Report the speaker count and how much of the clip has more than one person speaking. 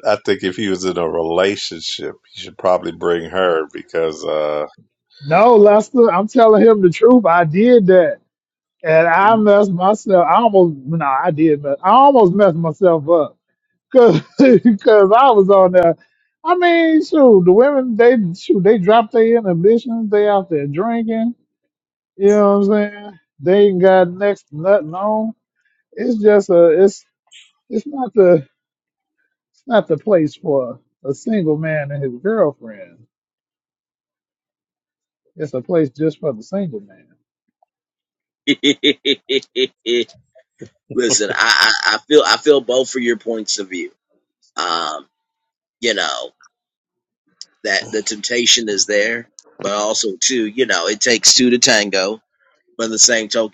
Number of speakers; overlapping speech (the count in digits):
3, no overlap